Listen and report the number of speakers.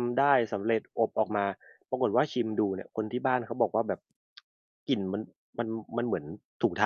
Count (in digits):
1